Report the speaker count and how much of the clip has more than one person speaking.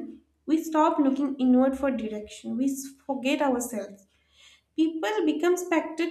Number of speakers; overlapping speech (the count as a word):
one, no overlap